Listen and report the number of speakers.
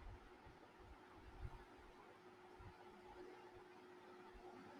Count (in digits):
0